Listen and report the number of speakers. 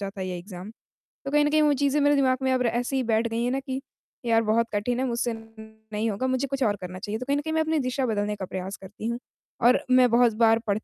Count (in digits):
1